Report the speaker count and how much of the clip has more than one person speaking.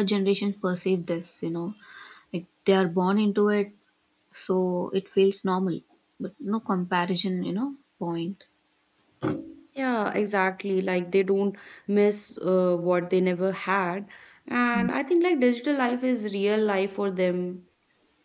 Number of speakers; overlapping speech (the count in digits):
2, no overlap